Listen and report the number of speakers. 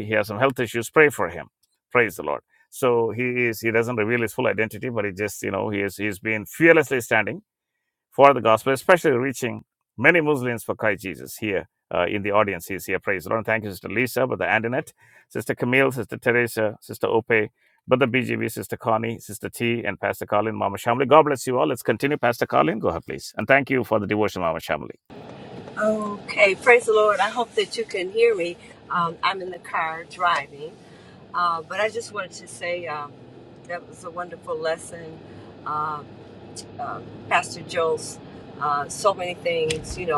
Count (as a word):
two